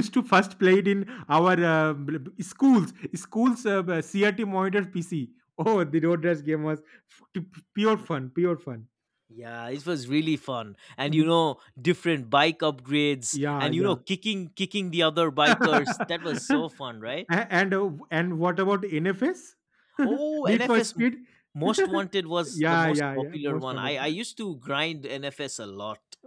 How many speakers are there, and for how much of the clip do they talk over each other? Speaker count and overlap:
2, about 11%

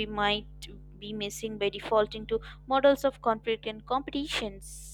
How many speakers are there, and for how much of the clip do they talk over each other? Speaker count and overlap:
1, no overlap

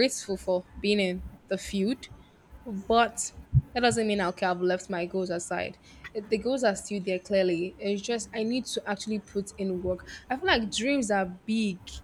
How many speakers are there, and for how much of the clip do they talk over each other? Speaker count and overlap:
1, no overlap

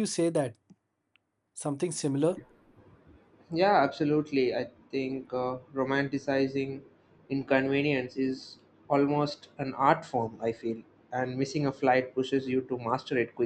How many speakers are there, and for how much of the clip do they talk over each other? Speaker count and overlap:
2, no overlap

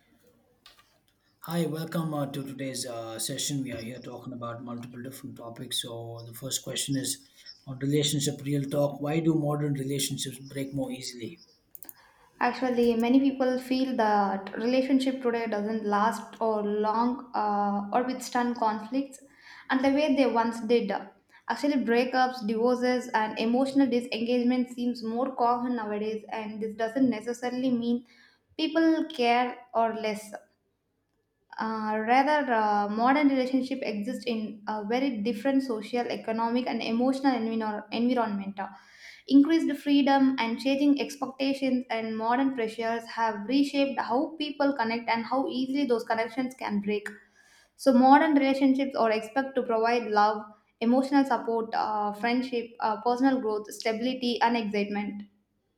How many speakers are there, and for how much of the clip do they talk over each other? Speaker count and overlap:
2, no overlap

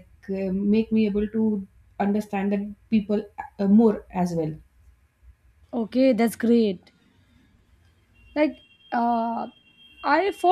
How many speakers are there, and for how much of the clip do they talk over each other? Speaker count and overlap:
2, no overlap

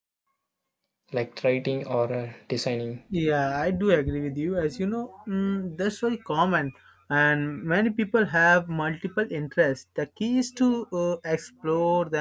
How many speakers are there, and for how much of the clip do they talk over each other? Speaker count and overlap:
2, no overlap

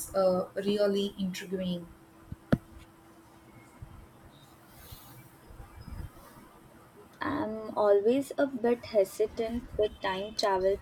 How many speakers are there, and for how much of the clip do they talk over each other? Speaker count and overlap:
2, no overlap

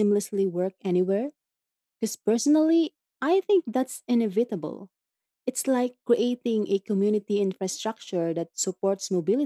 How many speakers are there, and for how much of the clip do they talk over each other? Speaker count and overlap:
1, no overlap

